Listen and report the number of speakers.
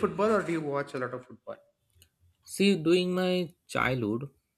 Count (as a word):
two